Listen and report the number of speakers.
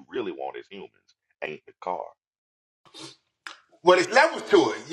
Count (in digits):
2